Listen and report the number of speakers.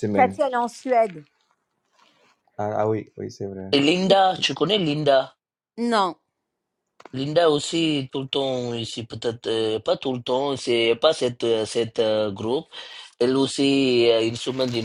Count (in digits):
3